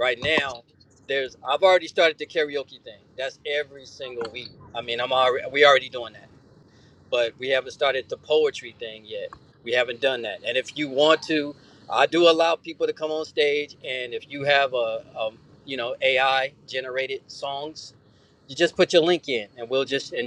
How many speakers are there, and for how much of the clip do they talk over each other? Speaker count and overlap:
1, no overlap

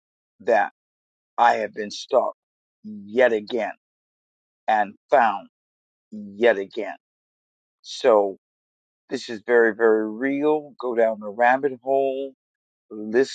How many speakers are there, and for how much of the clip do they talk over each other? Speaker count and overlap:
1, no overlap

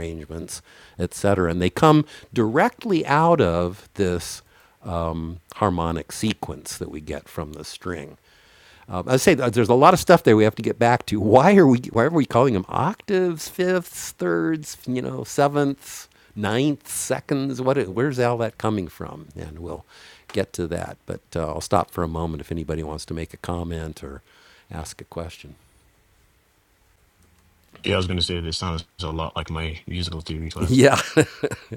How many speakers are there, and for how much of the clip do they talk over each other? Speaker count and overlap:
2, about 1%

